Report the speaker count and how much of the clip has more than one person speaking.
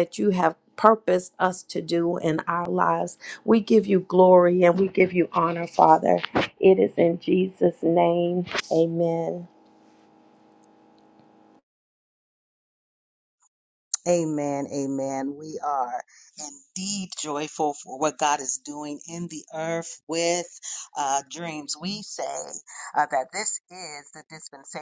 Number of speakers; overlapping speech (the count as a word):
two, no overlap